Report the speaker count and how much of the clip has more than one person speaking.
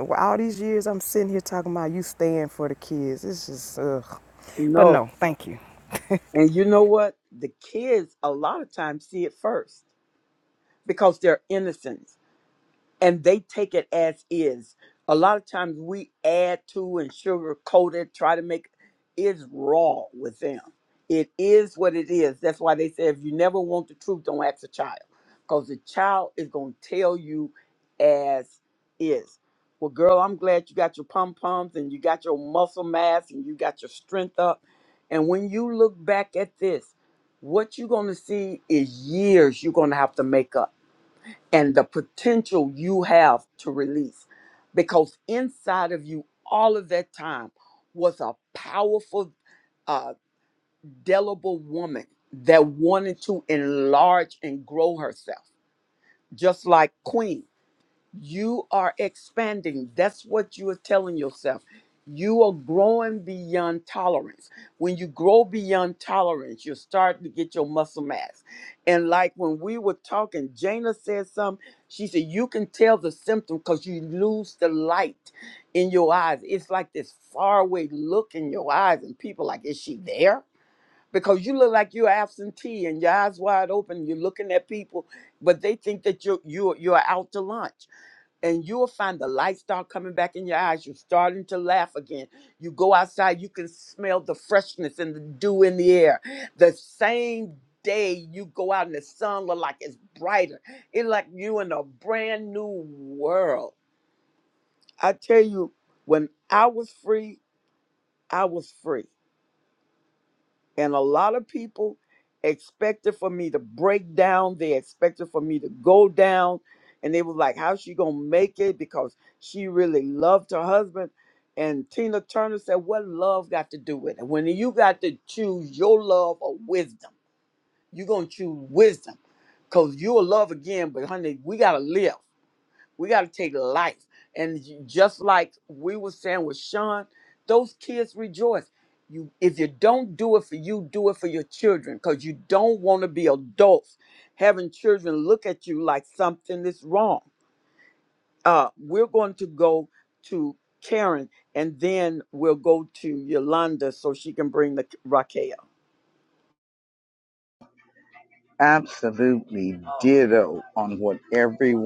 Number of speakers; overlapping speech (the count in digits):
3, under 1%